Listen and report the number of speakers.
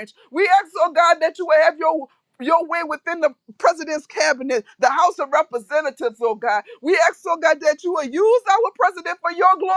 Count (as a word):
one